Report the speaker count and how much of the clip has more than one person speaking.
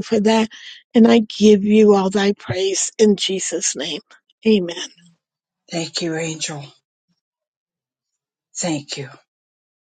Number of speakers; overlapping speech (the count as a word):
two, no overlap